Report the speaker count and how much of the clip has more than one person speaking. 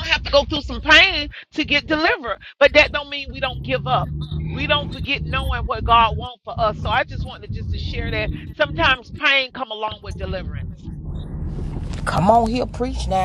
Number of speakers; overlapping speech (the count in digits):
2, no overlap